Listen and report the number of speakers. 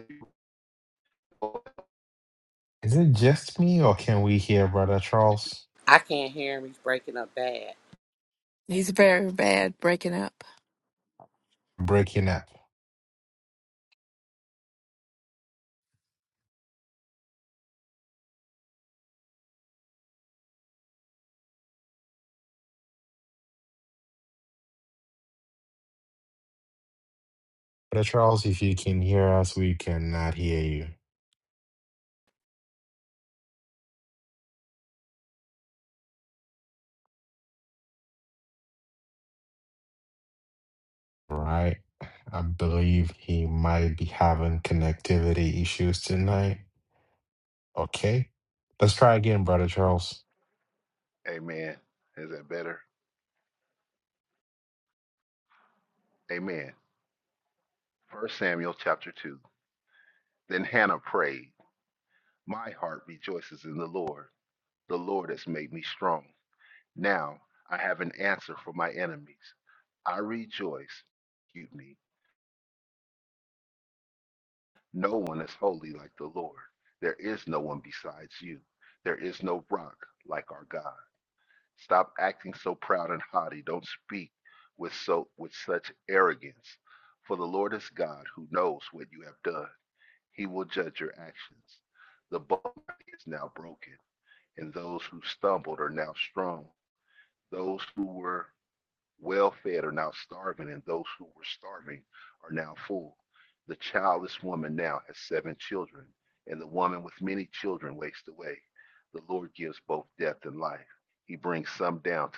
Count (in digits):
4